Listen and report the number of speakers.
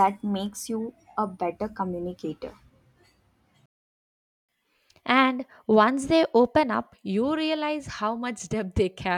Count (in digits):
2